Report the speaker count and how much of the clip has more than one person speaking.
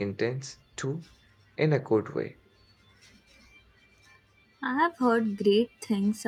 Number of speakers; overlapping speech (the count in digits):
2, no overlap